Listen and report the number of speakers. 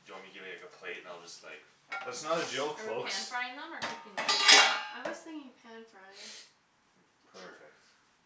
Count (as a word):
four